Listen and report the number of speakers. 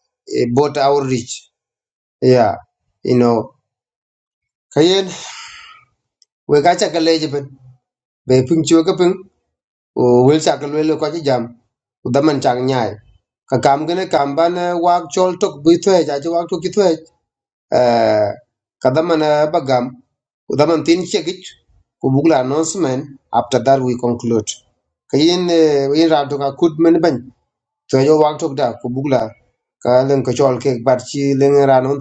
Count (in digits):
1